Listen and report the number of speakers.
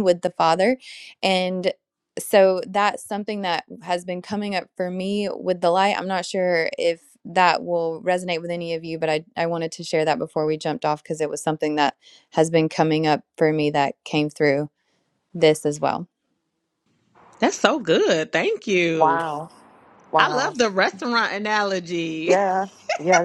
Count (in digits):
3